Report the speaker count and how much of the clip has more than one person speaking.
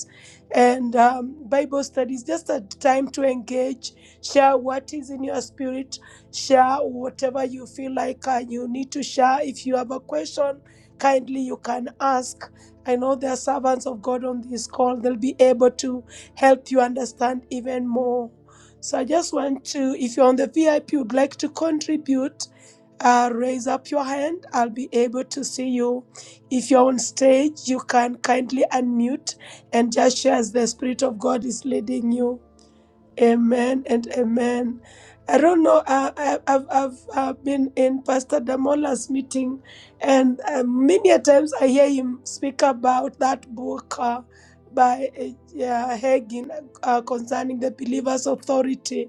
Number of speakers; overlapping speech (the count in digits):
1, no overlap